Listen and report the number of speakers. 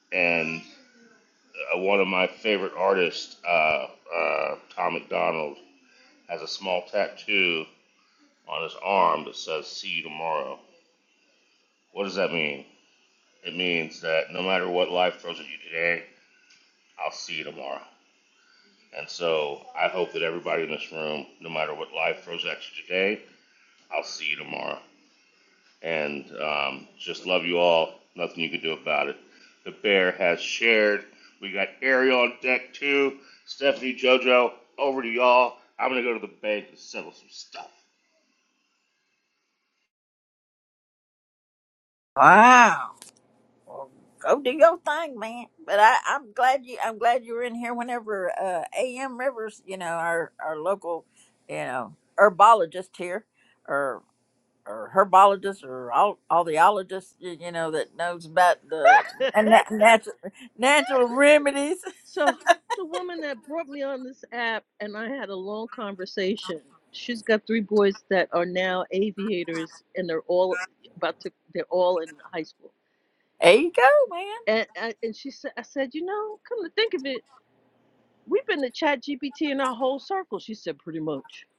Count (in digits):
3